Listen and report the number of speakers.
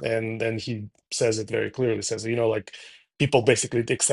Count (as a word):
one